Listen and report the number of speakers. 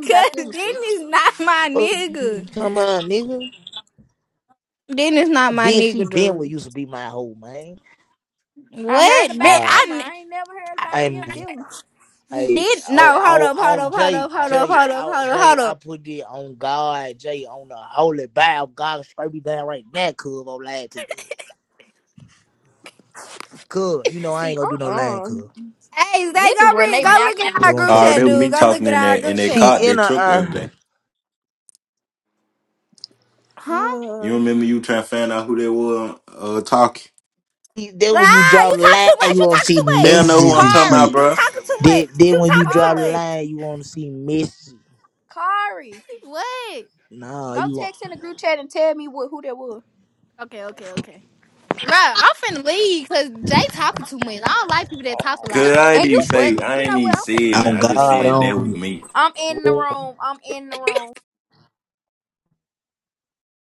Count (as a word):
four